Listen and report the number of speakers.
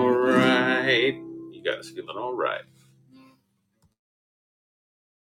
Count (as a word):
one